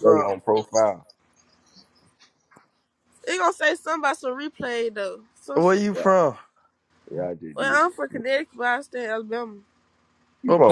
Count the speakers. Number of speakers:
3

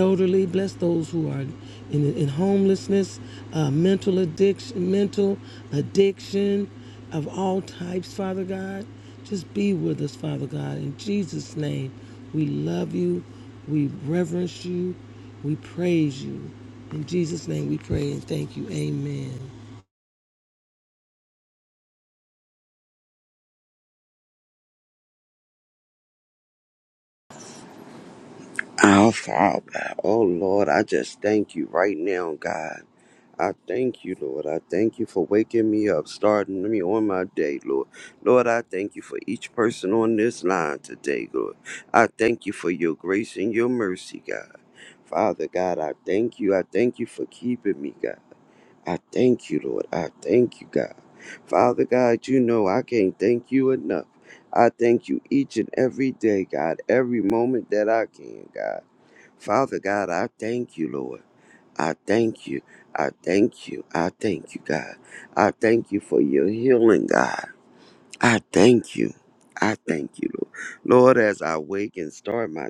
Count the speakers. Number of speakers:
2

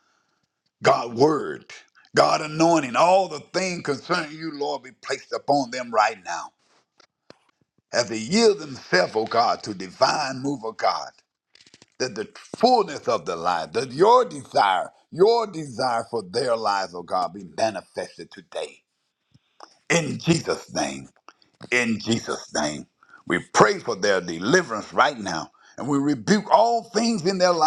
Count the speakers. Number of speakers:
1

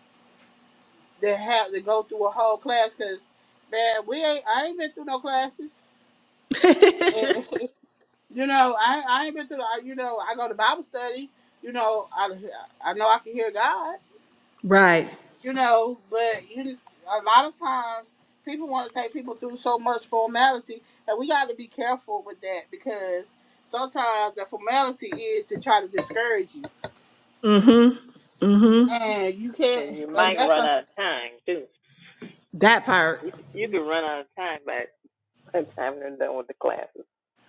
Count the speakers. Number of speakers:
3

